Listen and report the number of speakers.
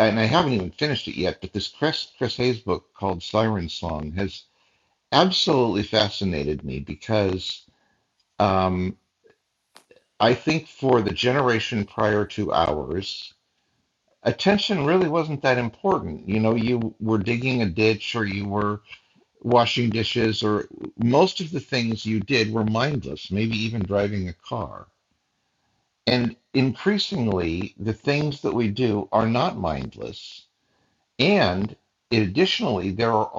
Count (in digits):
1